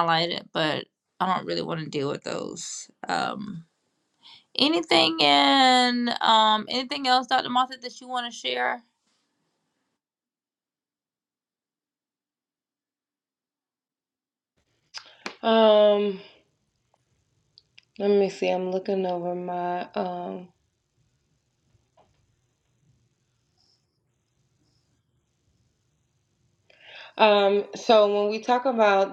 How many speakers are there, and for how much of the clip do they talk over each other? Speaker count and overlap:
two, no overlap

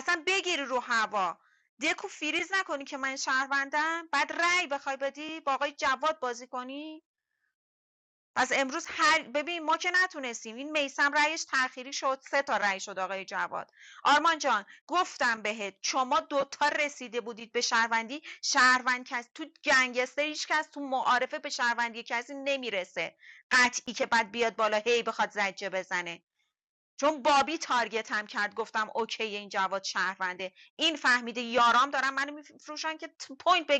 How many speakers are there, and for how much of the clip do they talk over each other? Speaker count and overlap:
one, no overlap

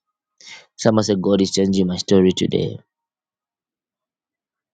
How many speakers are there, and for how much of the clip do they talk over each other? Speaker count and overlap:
one, no overlap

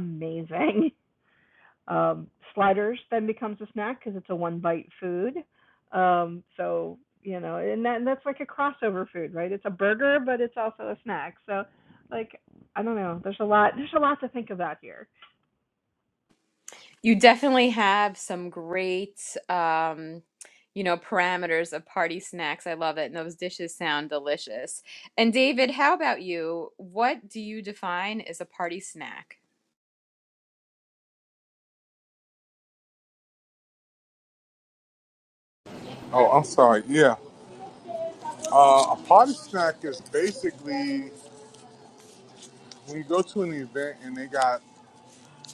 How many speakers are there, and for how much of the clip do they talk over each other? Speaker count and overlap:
three, no overlap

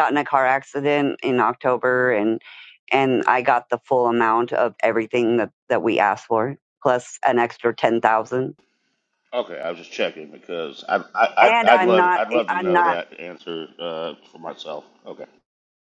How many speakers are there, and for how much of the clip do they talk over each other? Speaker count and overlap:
two, about 10%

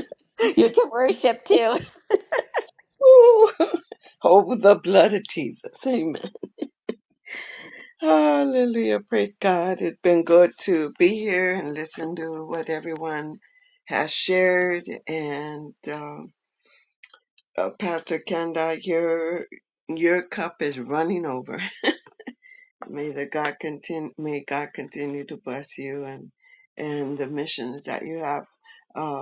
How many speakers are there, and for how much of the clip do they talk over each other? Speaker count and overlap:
two, no overlap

